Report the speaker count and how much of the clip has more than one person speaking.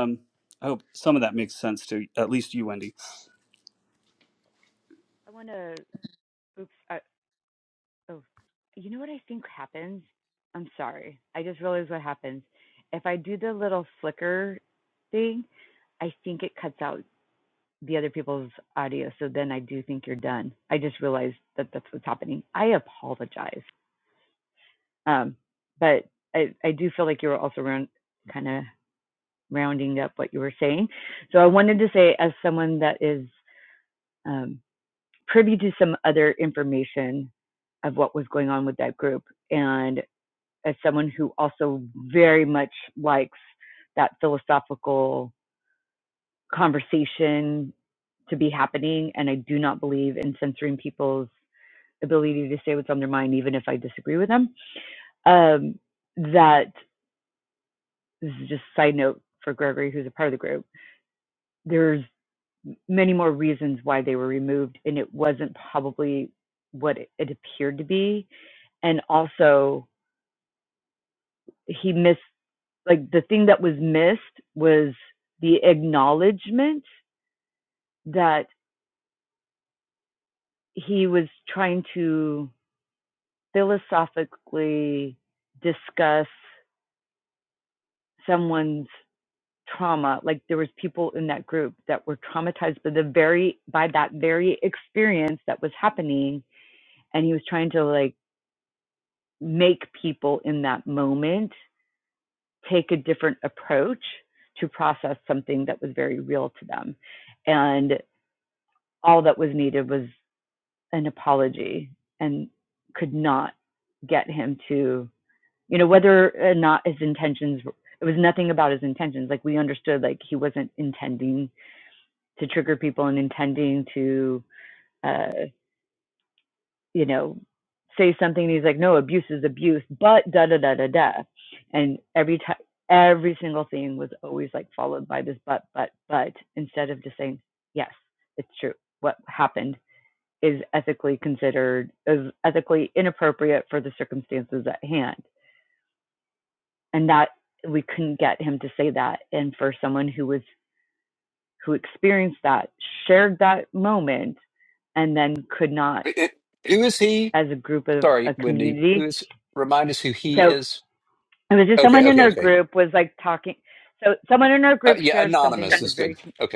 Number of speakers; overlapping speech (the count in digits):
3, about 2%